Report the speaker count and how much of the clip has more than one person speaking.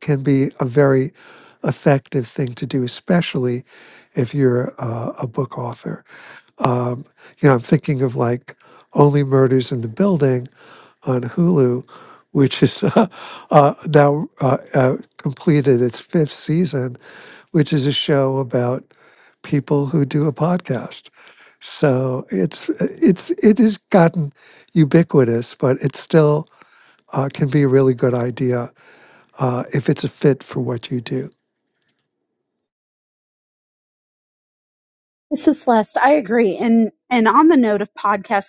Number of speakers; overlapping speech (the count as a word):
two, no overlap